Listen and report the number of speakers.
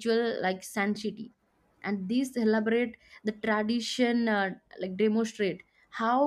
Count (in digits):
1